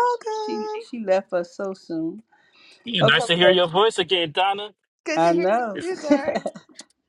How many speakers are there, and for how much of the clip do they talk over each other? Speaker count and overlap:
3, about 22%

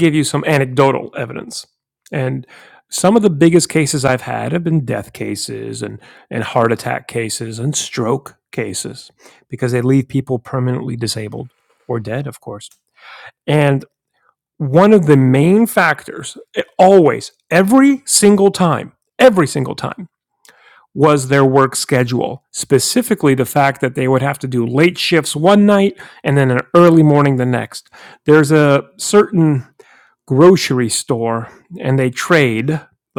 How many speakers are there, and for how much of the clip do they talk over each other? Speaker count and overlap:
1, no overlap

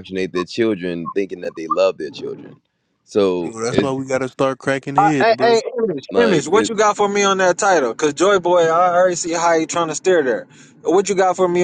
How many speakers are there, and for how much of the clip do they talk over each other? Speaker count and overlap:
3, about 14%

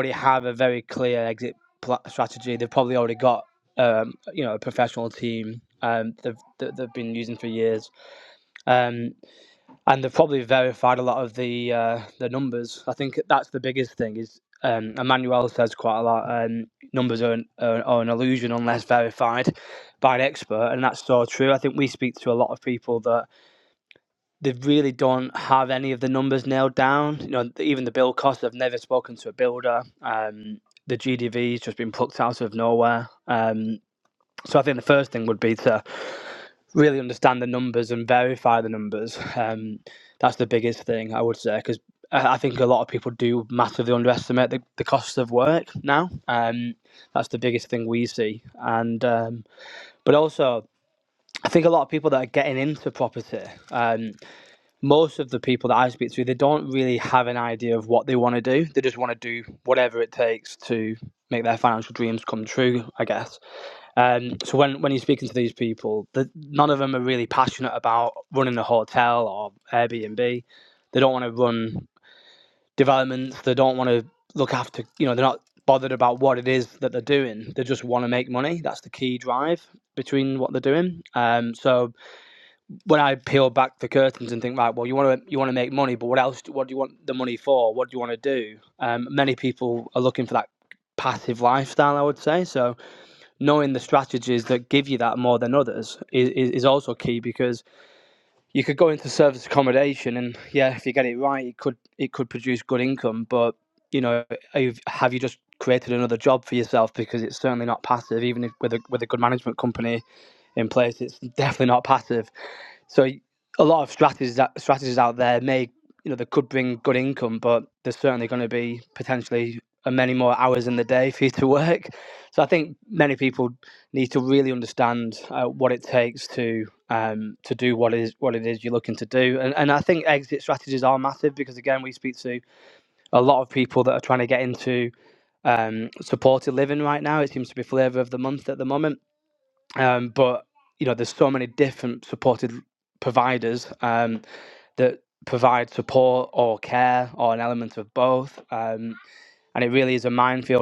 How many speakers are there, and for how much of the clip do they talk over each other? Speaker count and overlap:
1, no overlap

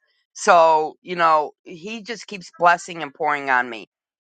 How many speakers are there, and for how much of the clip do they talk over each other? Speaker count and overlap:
1, no overlap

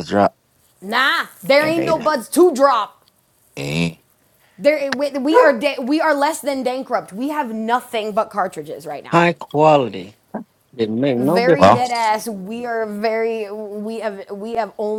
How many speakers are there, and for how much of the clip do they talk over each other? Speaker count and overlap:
3, about 8%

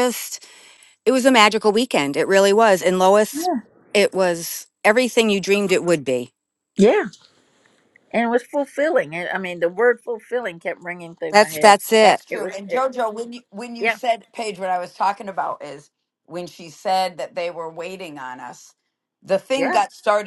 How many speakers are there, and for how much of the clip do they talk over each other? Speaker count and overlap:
3, about 7%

